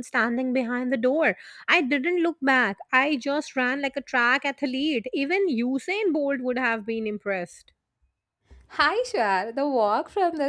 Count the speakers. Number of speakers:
2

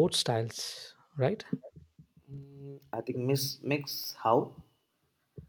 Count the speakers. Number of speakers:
2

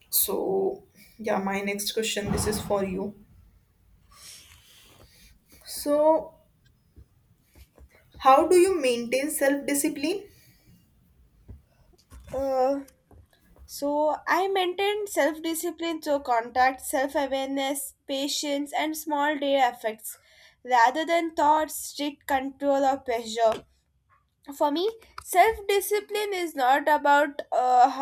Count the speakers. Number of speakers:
2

